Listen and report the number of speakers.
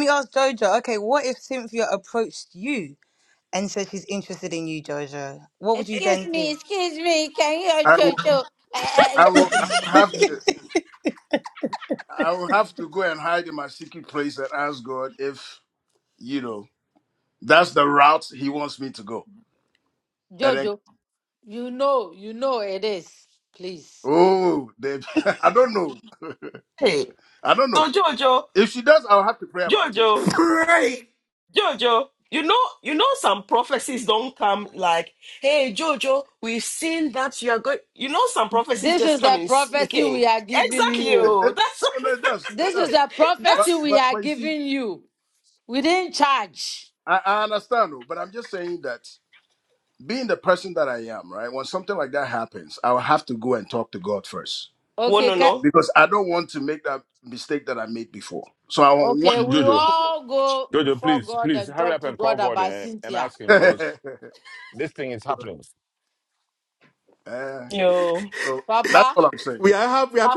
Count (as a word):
six